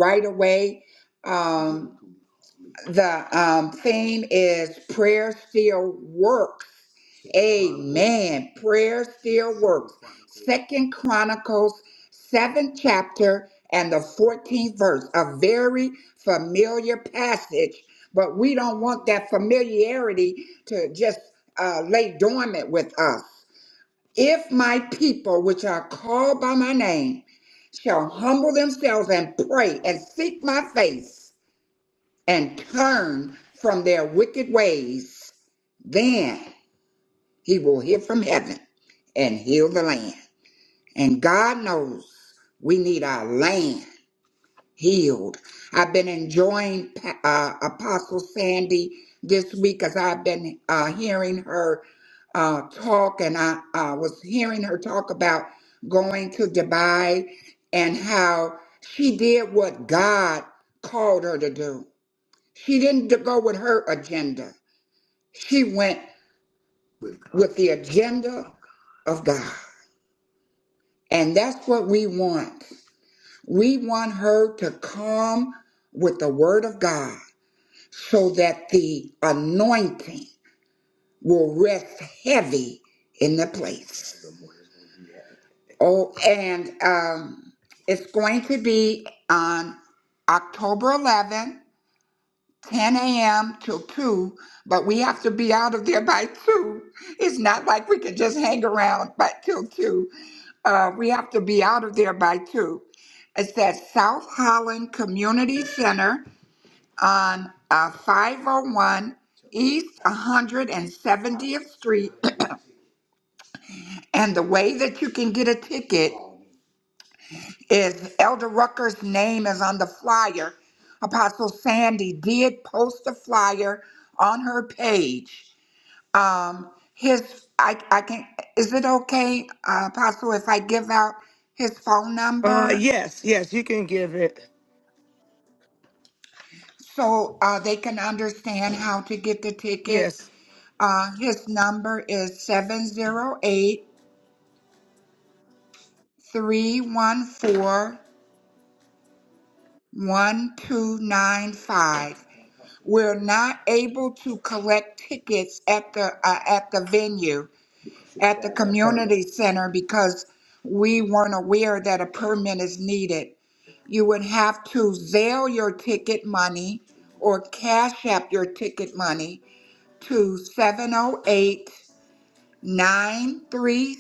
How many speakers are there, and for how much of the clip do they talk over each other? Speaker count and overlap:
2, under 1%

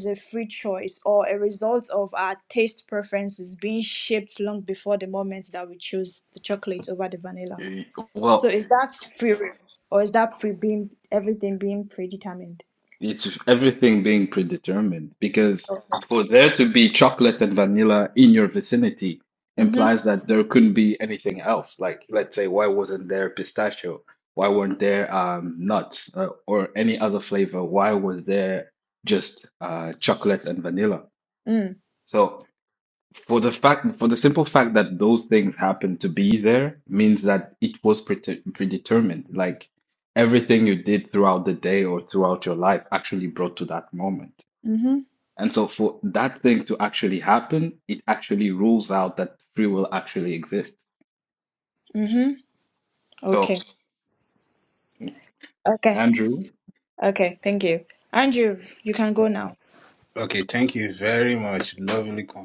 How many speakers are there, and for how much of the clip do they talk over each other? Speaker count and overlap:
3, about 1%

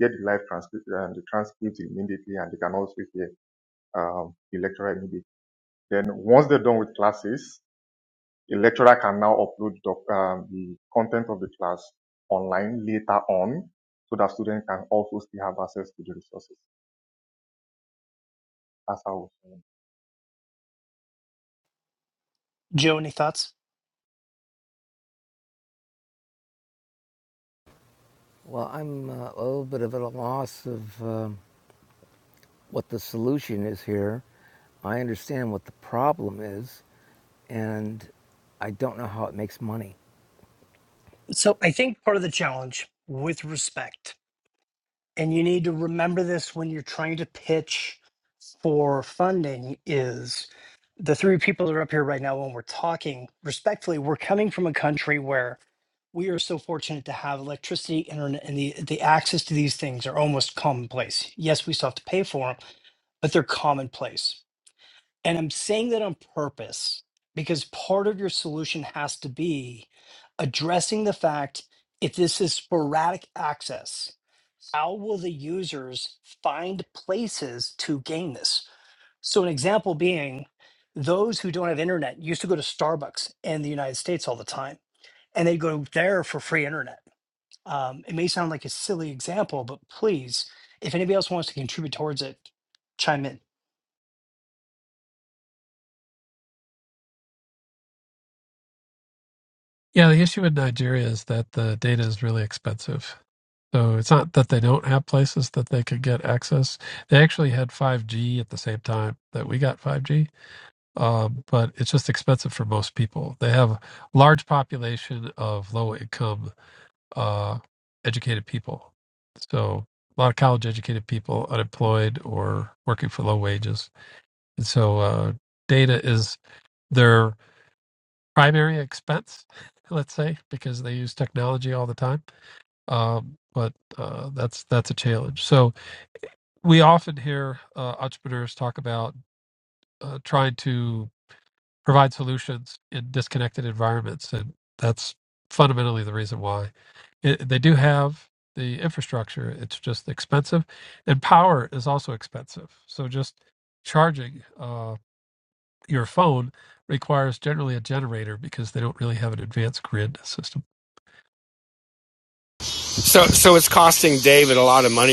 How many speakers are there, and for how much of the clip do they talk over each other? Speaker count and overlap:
5, no overlap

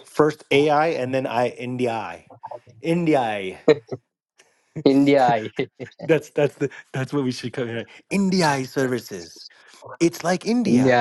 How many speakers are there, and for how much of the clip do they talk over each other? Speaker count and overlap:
2, about 3%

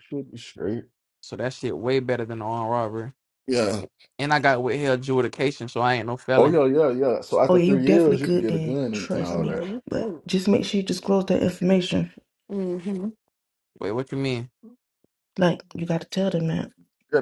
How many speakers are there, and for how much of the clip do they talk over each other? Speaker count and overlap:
4, about 16%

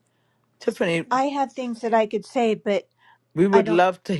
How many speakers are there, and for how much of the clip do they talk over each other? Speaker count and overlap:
2, about 6%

